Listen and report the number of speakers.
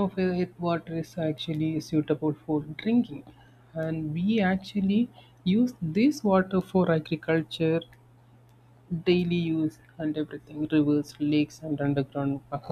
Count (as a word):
one